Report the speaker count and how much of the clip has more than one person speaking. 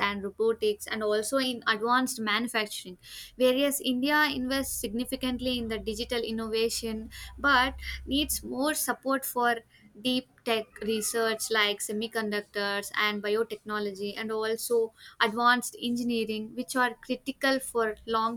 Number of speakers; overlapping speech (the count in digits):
1, no overlap